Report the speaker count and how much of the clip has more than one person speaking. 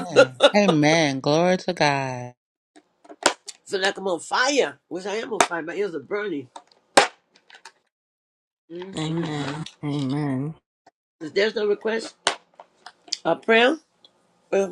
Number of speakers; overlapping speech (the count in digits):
3, no overlap